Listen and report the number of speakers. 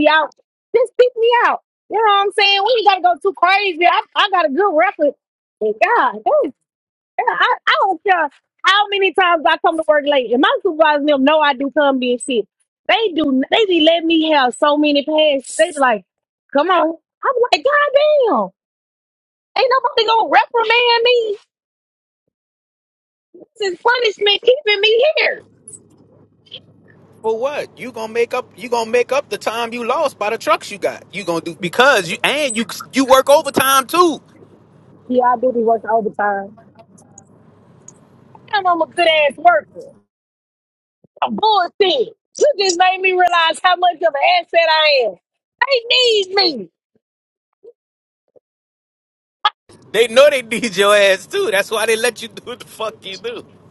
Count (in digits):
2